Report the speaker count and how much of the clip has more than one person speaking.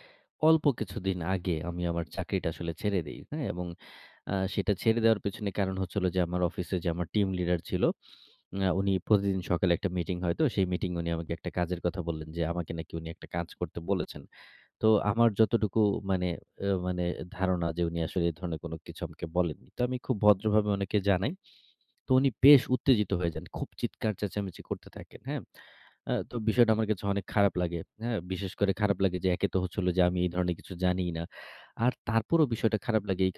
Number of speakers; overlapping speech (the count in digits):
1, no overlap